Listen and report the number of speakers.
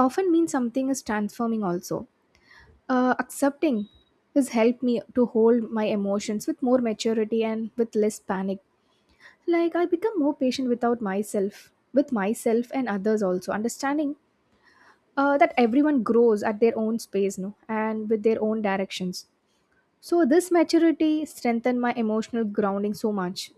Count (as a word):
one